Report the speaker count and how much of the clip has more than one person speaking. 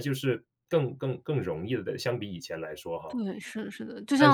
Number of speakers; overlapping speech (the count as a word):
two, about 5%